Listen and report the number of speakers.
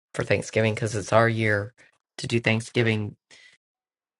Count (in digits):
1